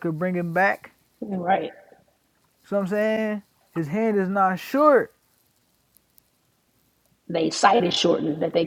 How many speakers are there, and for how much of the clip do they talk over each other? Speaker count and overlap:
two, no overlap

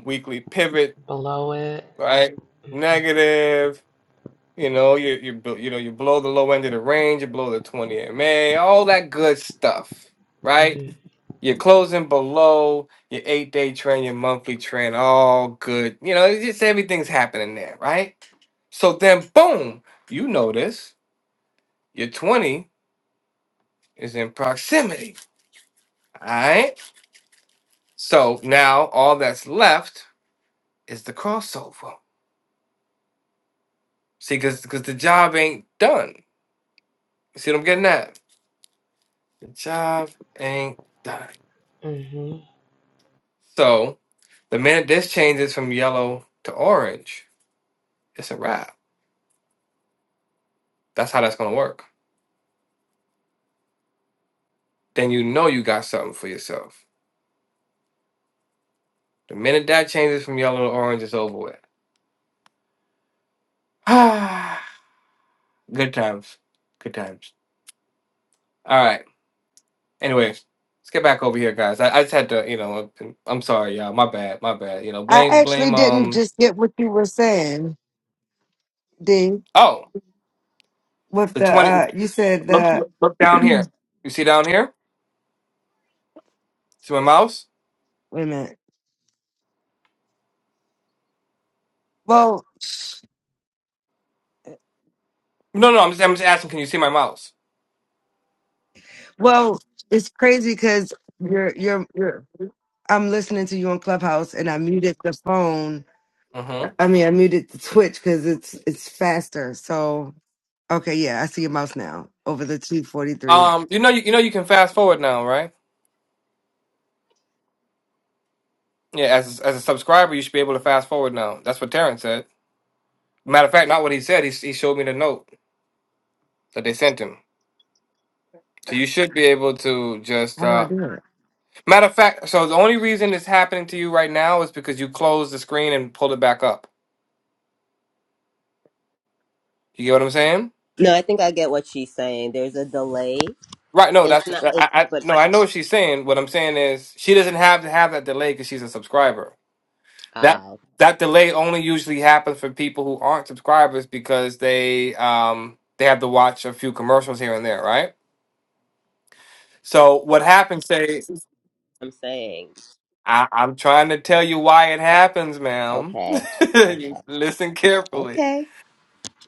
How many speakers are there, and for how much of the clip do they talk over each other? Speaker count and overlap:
four, about 3%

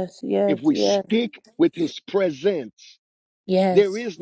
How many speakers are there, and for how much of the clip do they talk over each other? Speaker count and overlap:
two, about 15%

